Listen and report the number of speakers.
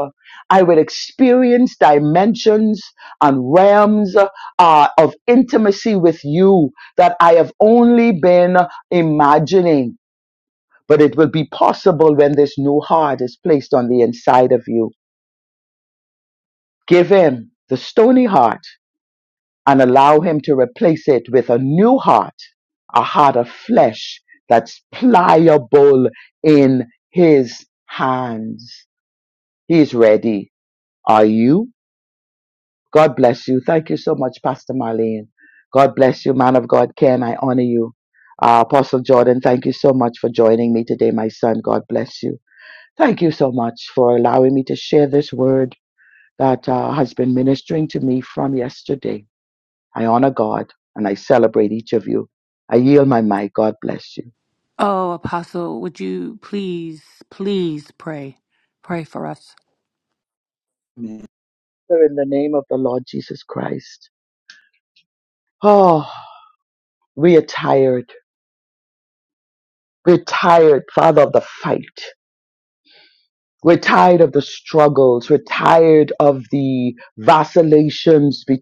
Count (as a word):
two